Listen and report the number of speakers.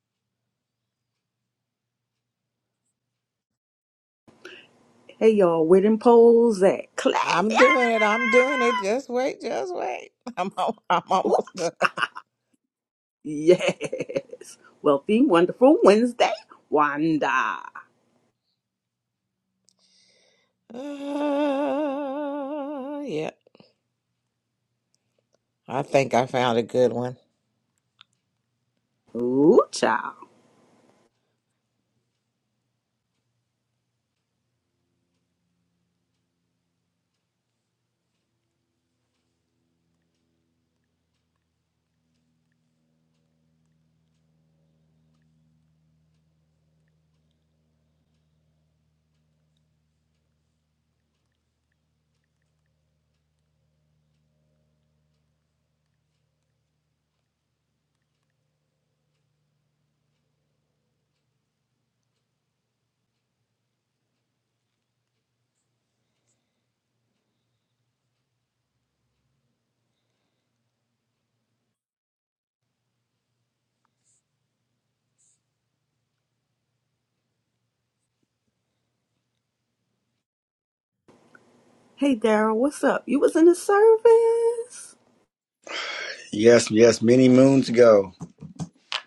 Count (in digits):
3